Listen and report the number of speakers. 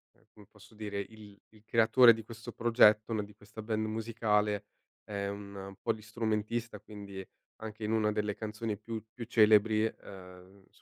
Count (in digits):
1